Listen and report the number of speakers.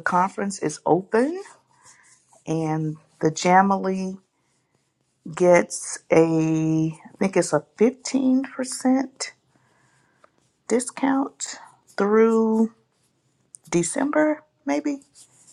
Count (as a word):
one